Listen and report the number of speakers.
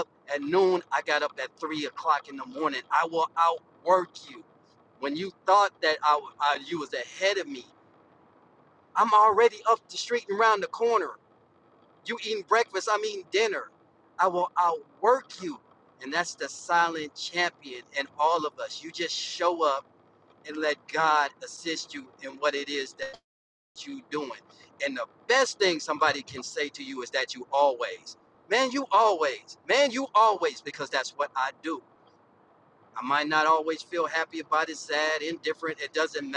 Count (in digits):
1